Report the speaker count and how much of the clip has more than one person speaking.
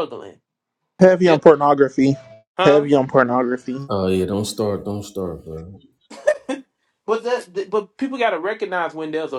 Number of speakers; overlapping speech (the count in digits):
3, about 4%